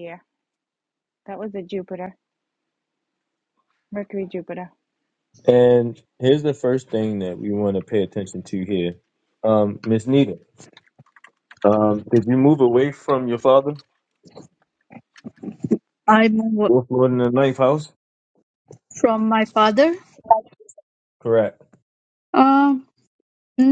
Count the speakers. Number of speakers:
3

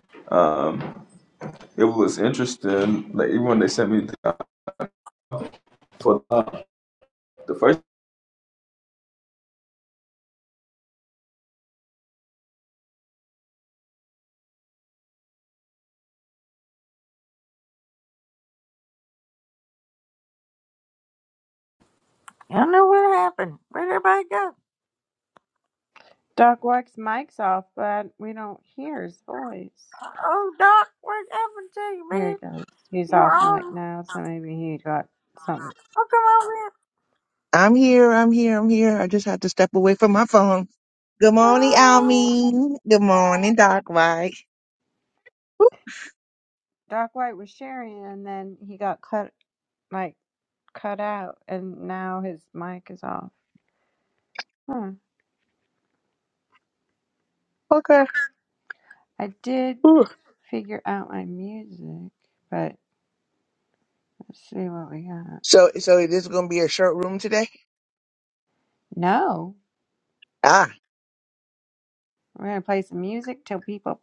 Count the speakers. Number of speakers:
4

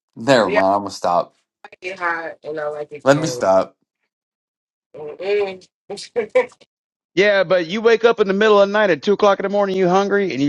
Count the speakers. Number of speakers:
3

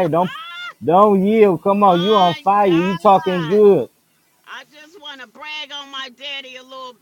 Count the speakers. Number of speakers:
2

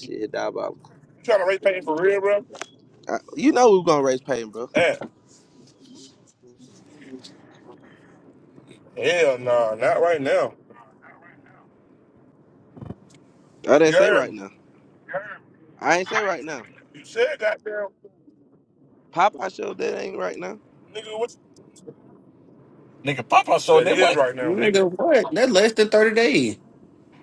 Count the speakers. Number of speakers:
4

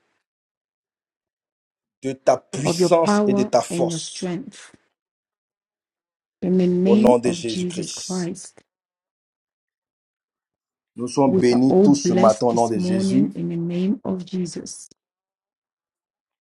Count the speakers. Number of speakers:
2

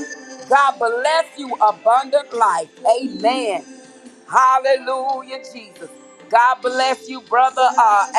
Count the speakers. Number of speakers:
1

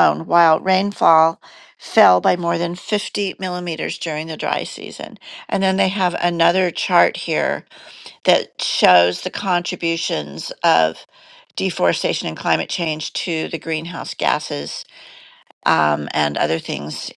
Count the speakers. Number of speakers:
1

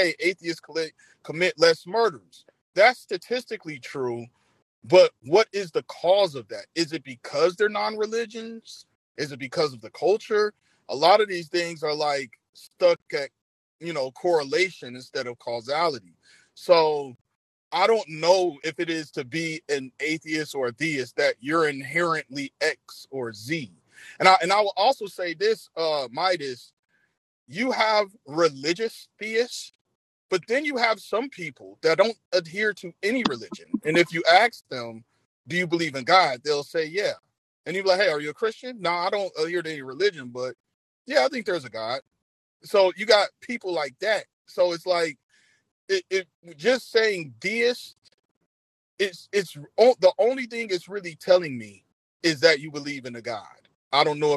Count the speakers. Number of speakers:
1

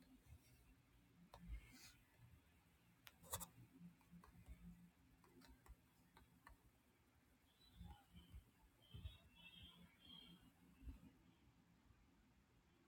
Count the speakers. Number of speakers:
0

